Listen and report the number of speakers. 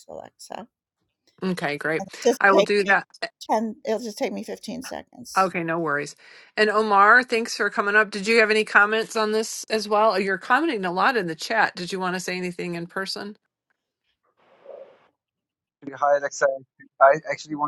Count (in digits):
3